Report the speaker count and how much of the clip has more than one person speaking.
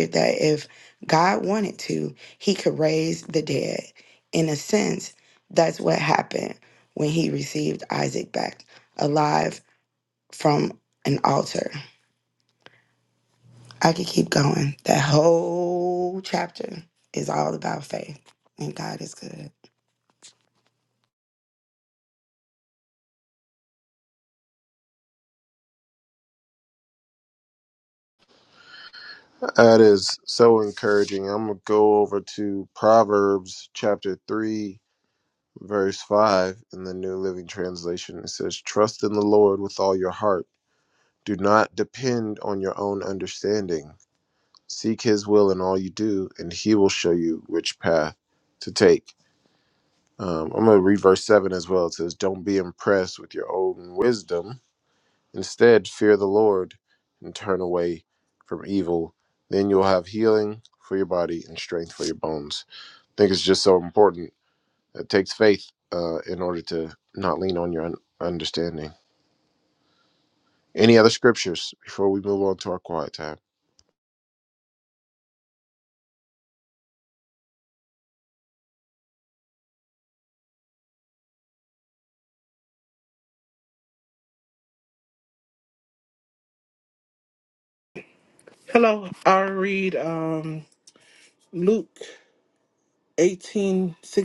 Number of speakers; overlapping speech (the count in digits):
3, no overlap